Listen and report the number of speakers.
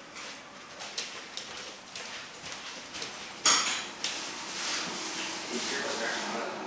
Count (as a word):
one